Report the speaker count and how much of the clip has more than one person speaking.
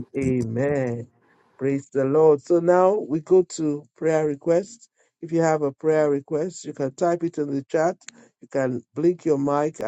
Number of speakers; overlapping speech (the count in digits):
1, no overlap